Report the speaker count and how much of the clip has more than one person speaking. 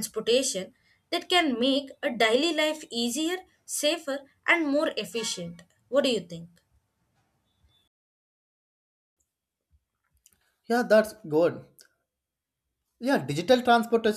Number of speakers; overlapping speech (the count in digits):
2, no overlap